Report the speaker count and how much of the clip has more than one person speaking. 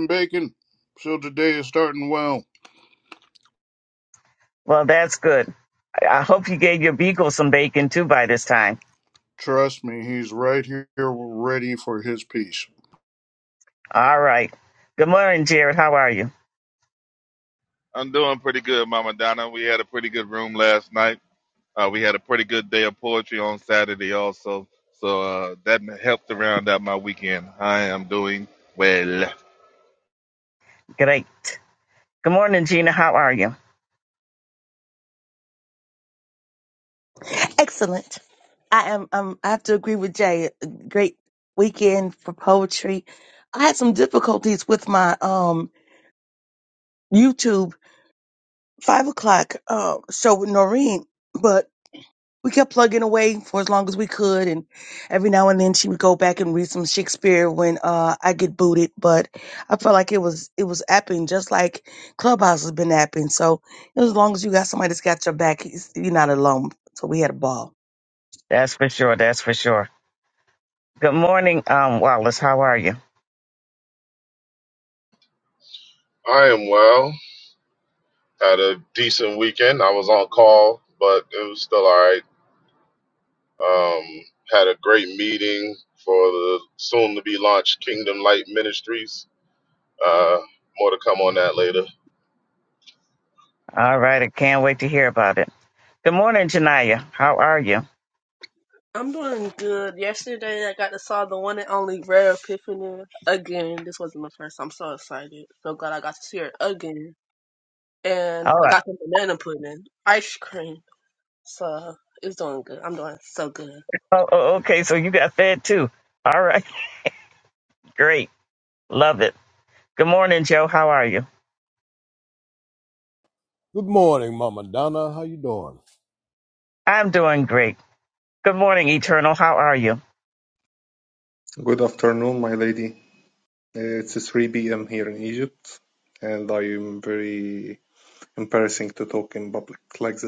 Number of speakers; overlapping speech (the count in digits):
8, under 1%